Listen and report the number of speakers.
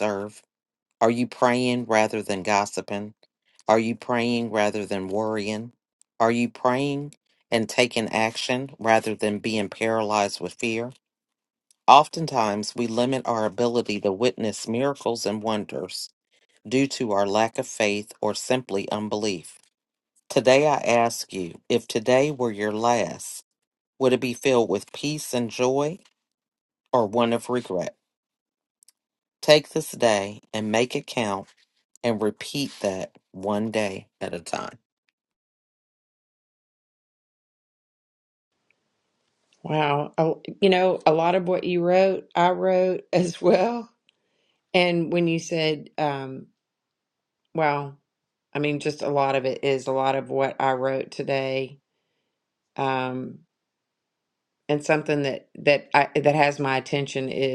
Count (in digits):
2